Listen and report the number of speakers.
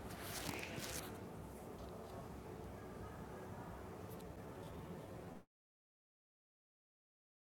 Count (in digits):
0